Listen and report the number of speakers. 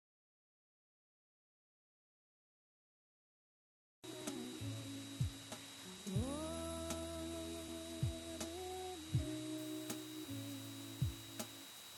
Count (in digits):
0